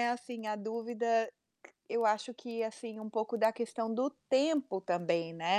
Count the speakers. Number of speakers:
1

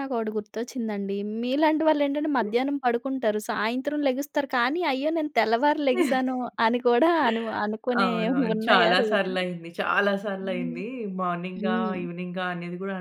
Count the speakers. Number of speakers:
2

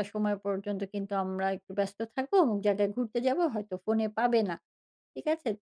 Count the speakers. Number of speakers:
1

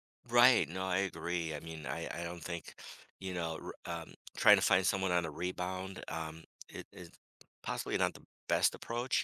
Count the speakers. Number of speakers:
1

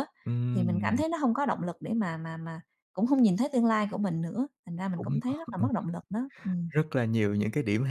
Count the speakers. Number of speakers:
2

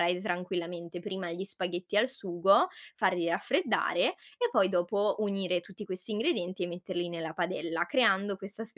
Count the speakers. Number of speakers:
1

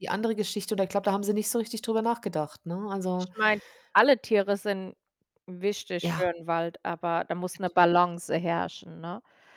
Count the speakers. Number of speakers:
2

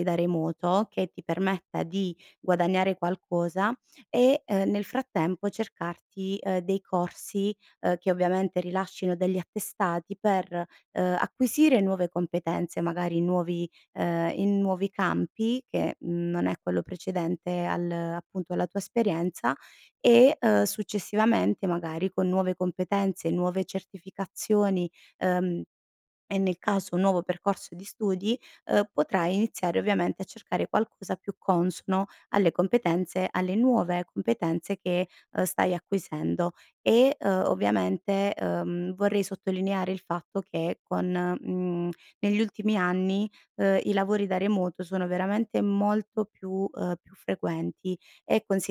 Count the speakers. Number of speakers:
1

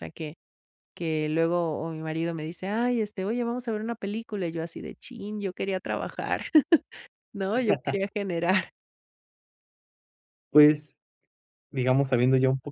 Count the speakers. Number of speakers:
2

